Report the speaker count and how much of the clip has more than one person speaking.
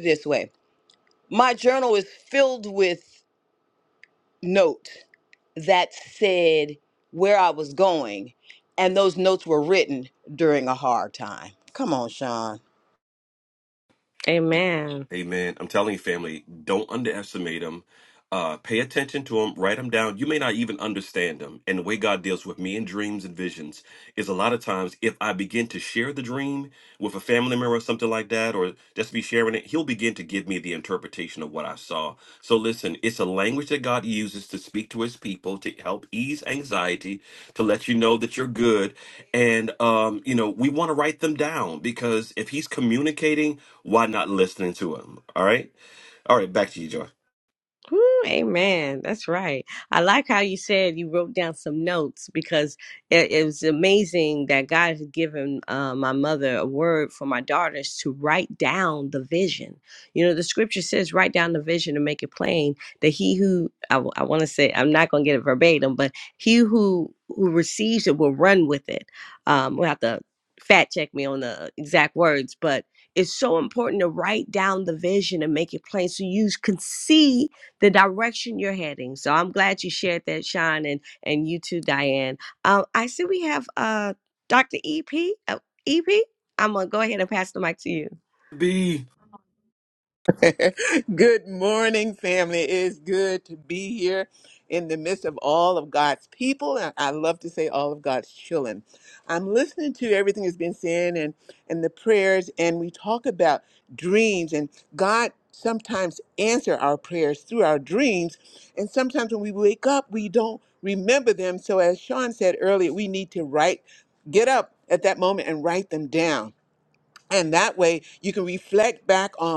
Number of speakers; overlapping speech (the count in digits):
4, no overlap